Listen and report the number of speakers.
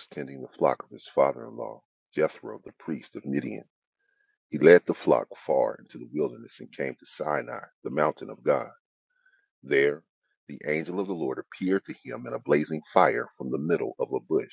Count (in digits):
1